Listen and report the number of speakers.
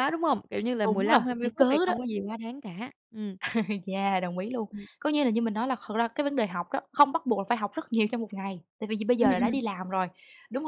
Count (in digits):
2